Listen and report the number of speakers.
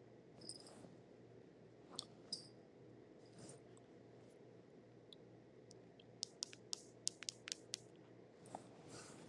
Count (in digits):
0